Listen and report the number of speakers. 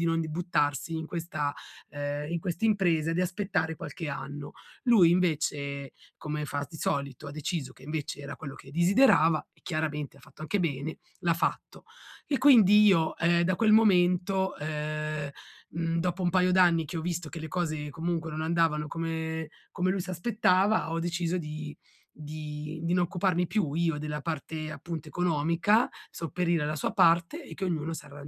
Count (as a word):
one